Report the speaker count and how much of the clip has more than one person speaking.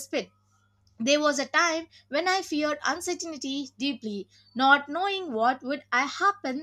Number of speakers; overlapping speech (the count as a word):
one, no overlap